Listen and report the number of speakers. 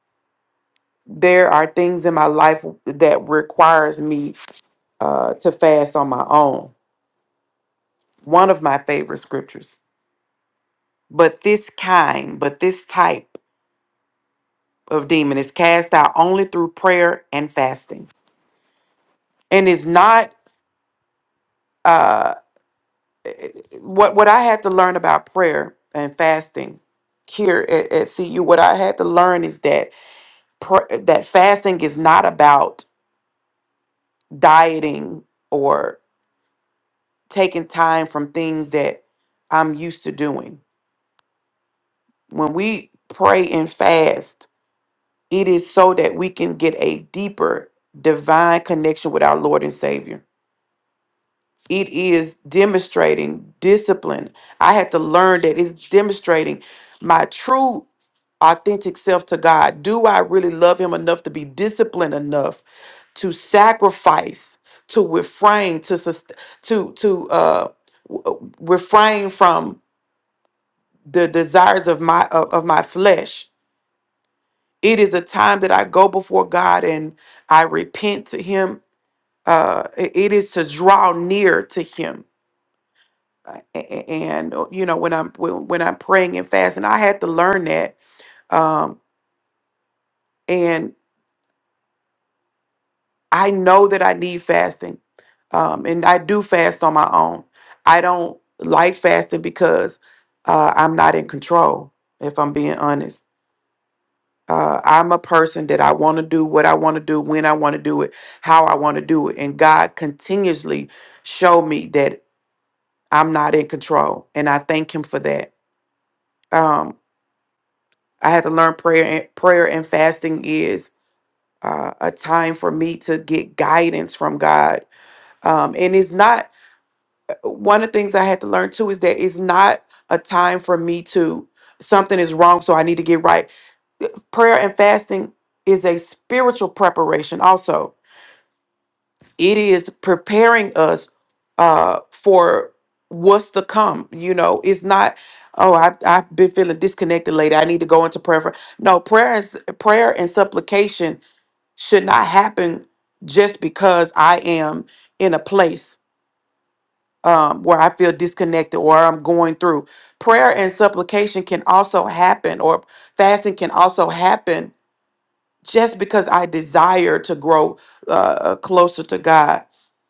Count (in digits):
1